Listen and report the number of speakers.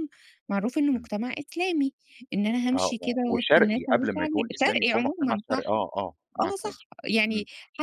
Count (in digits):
2